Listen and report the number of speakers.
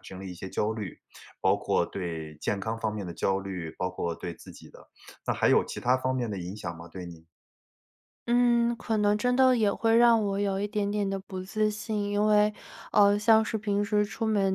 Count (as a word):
two